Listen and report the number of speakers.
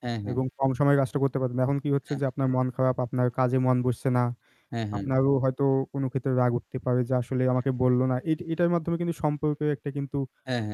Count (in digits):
2